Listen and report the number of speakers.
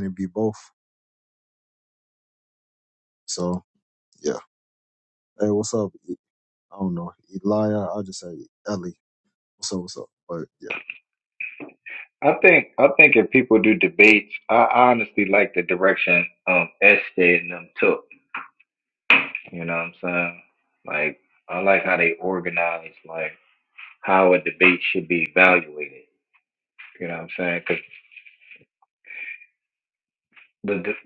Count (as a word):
two